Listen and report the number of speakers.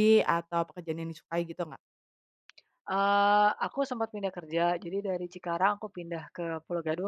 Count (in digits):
2